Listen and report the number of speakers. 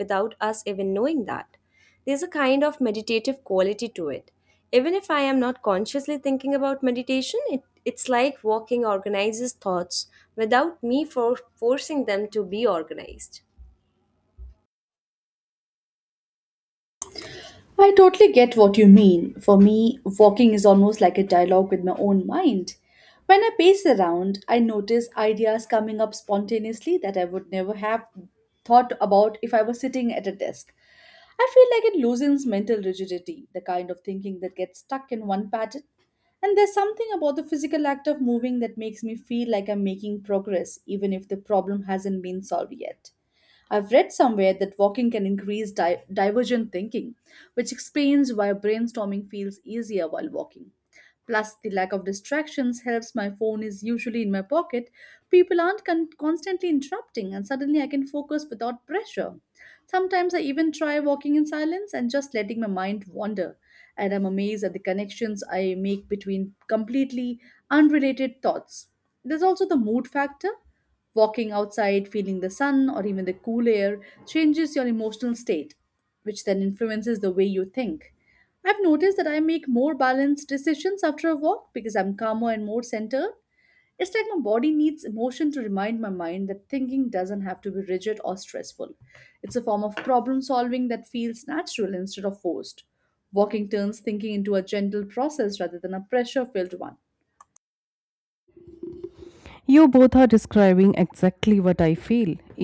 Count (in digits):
3